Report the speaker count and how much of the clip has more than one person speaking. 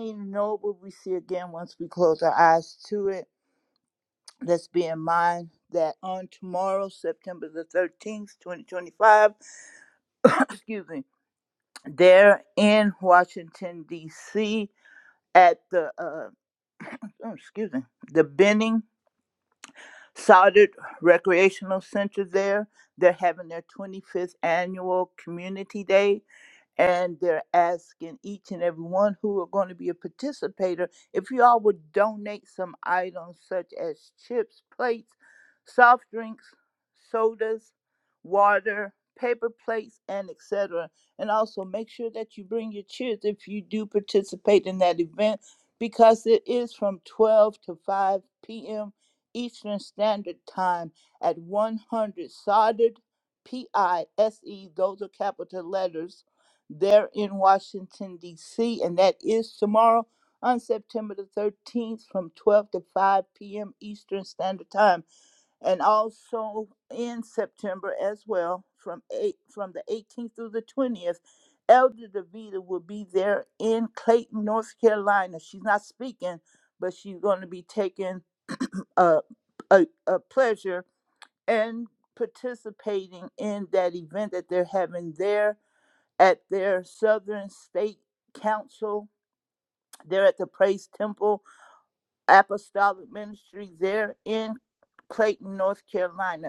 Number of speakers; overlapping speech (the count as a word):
one, no overlap